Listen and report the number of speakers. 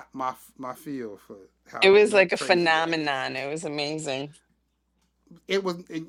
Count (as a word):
two